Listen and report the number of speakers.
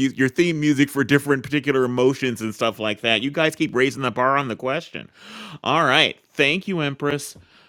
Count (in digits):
1